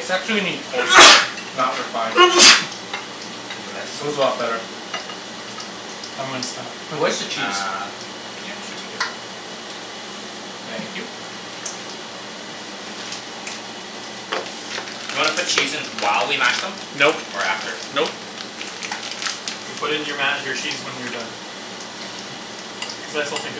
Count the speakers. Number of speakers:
3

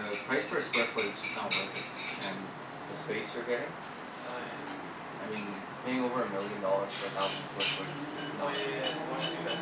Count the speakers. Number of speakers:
2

